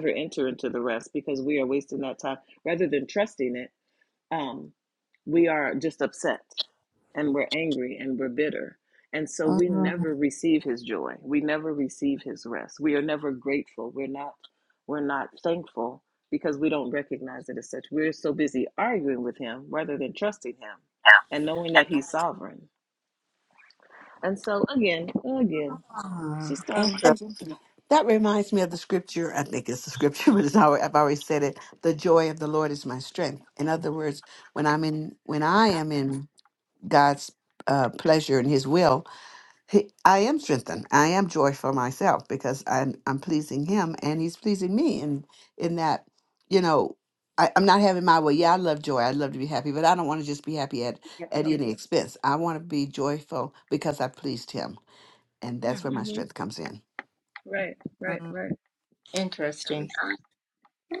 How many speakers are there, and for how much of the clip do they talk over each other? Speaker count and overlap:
three, about 3%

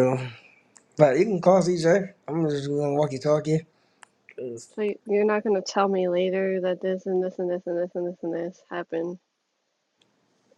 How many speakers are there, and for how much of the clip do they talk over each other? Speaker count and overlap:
two, no overlap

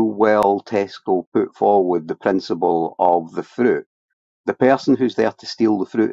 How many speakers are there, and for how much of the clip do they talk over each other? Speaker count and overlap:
one, no overlap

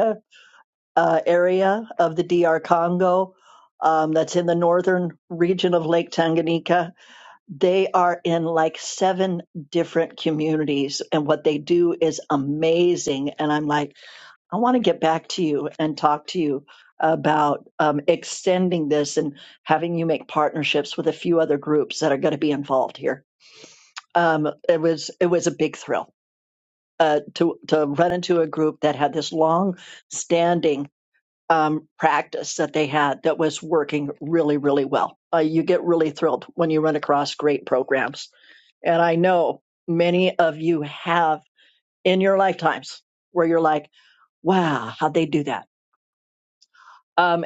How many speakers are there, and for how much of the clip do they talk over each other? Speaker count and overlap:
one, no overlap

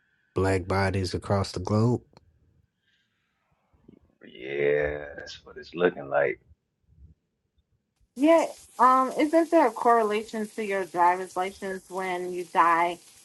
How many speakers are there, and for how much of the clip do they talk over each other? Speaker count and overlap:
three, no overlap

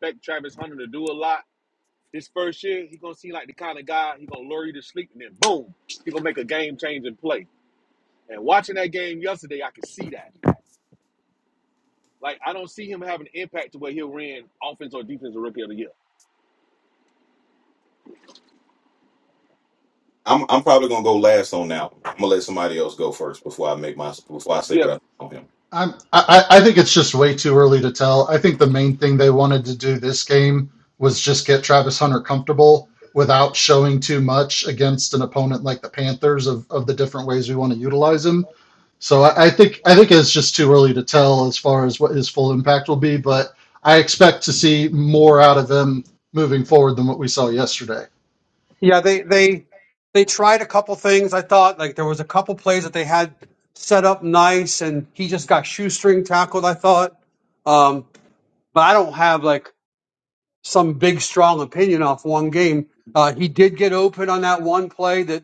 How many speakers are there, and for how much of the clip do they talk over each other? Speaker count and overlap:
four, under 1%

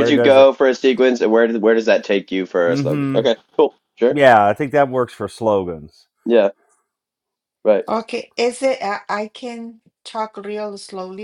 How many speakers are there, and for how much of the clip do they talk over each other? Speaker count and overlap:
three, about 9%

